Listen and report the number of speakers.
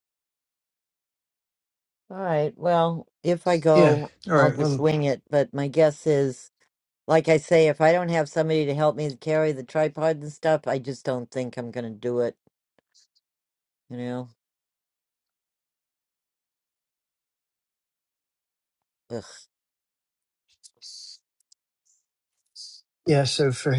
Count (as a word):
two